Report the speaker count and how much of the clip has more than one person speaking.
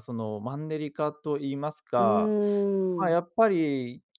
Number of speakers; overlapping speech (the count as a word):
two, about 12%